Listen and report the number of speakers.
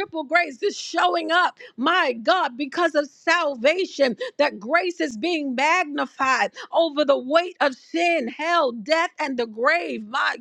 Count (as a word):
one